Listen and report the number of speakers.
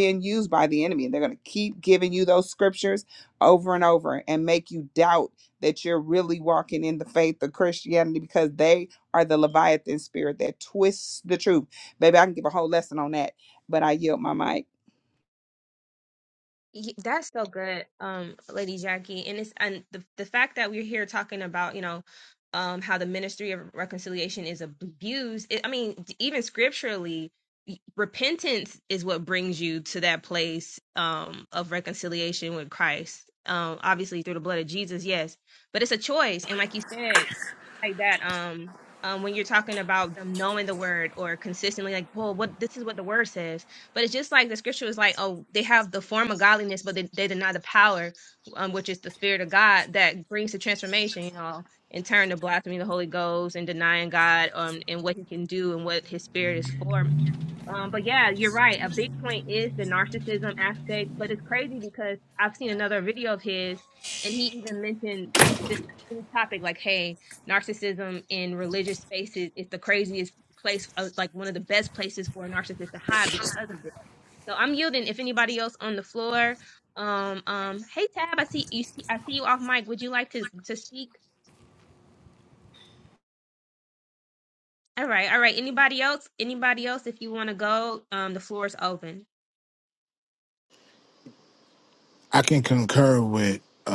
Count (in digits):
3